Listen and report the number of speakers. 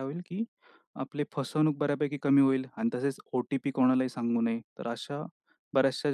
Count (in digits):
1